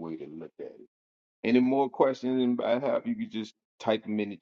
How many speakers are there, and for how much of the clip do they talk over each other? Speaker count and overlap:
1, no overlap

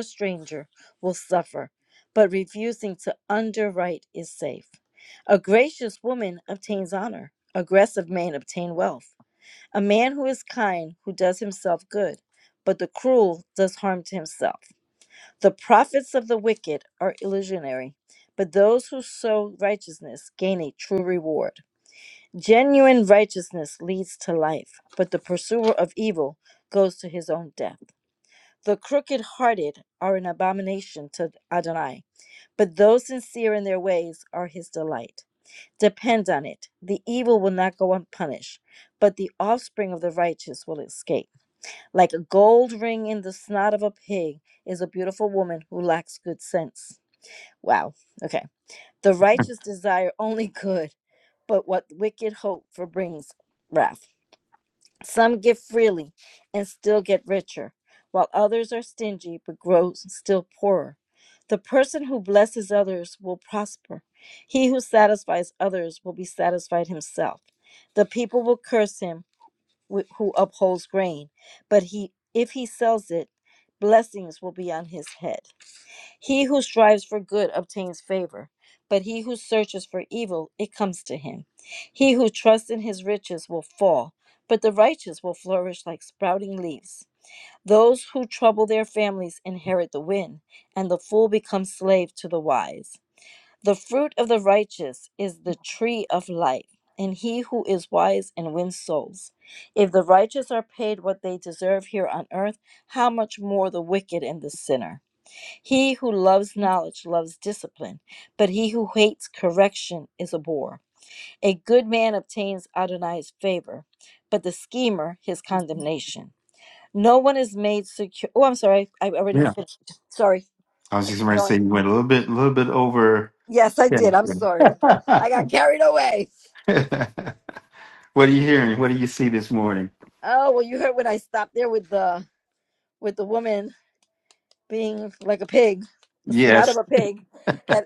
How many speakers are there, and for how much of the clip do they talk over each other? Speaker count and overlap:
2, about 1%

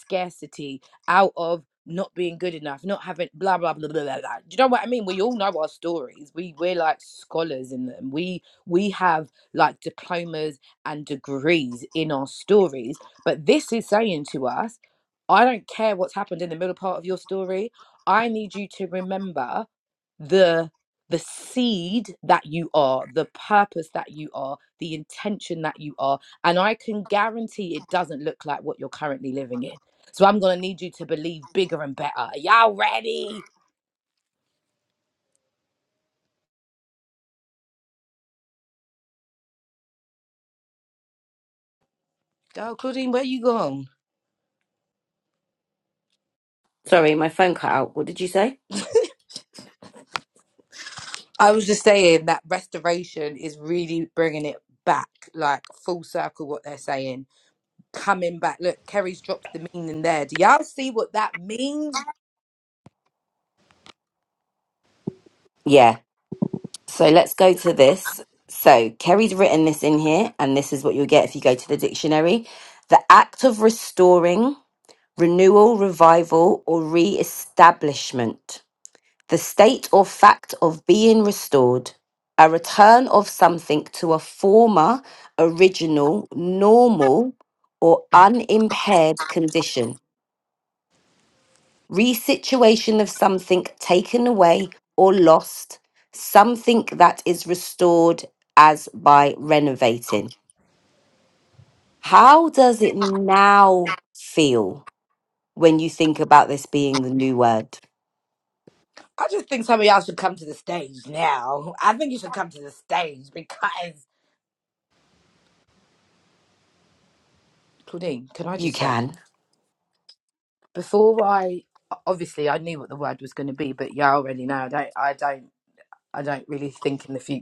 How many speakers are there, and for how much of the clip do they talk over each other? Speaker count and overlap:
2, under 1%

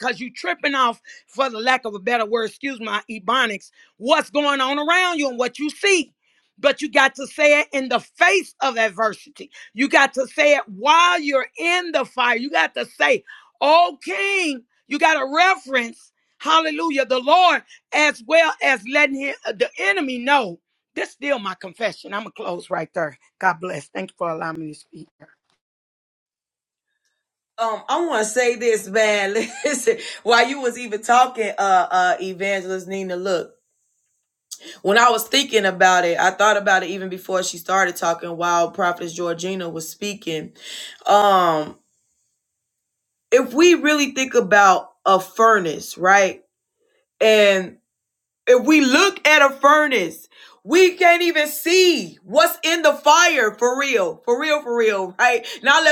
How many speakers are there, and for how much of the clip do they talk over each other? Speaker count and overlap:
2, no overlap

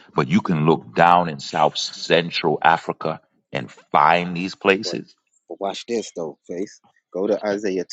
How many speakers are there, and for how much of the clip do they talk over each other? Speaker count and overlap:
2, about 2%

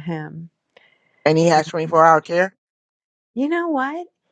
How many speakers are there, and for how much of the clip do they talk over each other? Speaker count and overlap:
2, about 9%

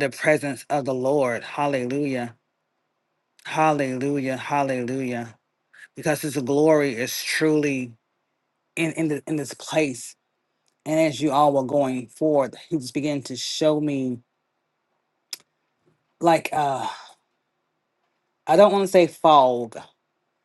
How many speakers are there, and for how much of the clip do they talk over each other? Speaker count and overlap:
1, no overlap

